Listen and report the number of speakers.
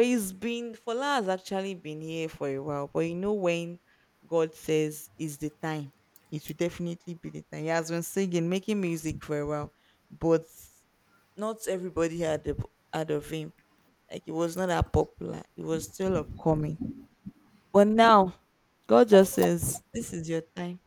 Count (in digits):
1